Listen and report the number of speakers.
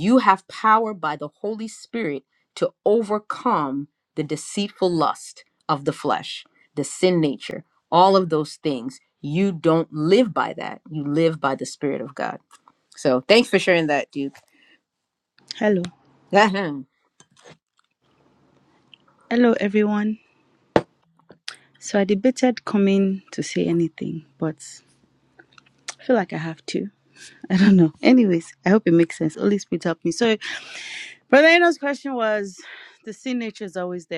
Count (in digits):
2